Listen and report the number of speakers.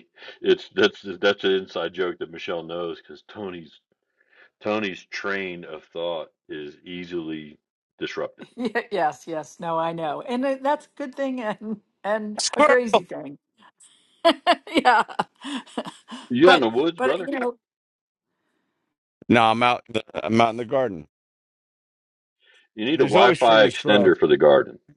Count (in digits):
3